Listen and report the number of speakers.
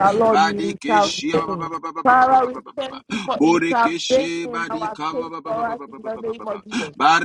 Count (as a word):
two